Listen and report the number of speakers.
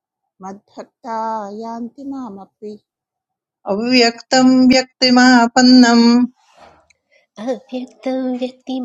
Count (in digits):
3